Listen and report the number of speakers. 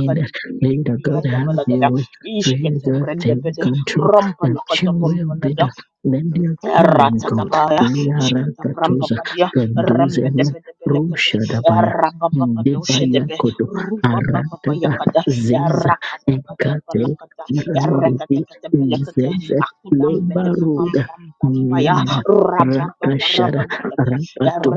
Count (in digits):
2